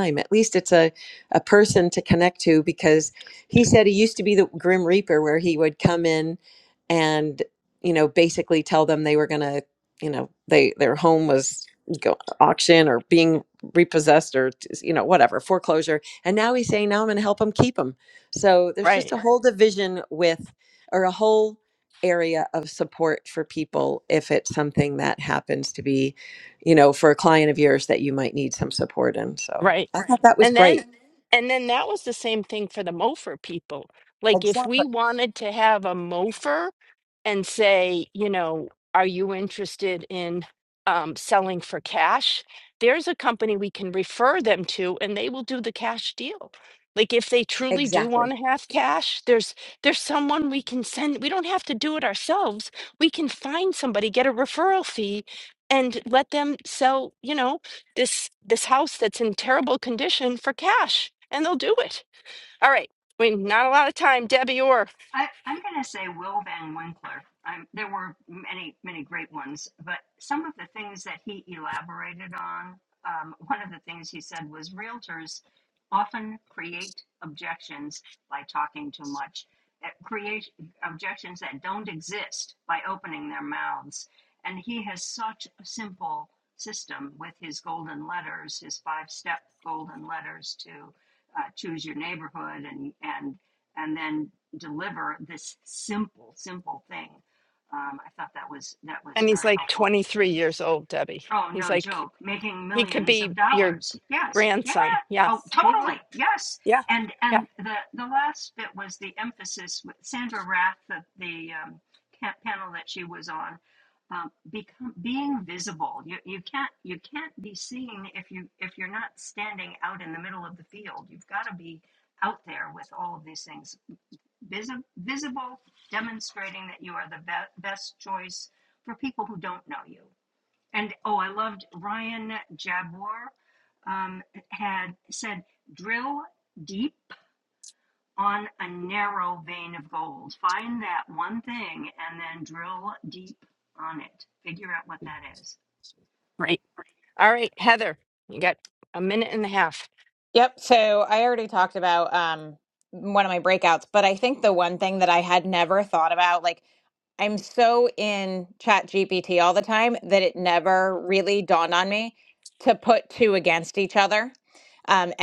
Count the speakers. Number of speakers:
four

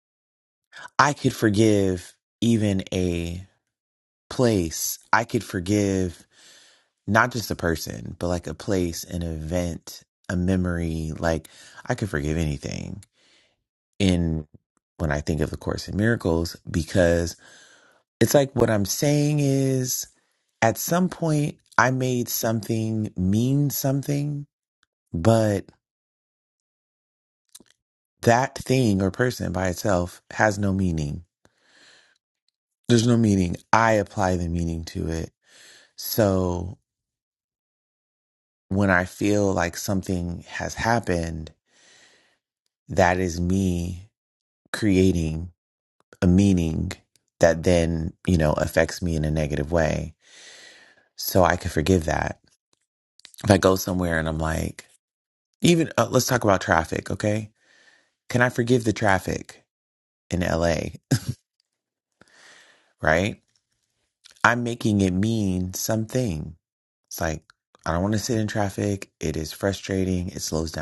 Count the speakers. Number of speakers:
one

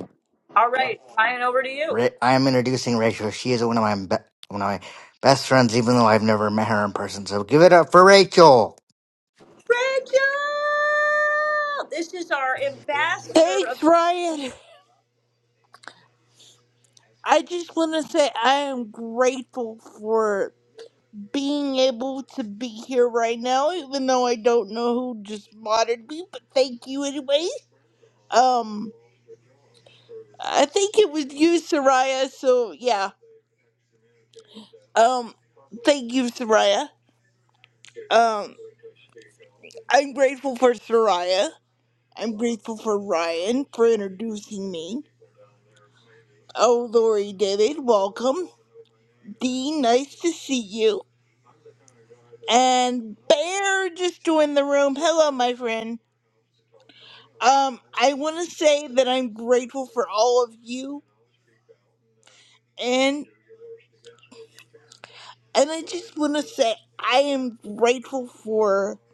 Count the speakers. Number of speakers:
three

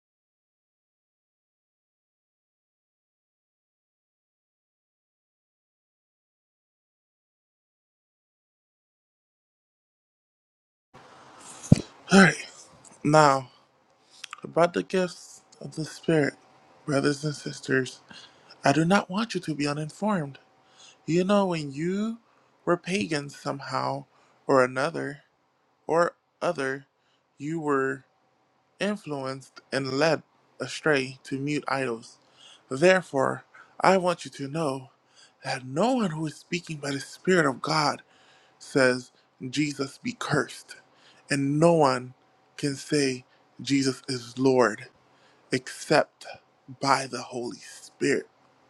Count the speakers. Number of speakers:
one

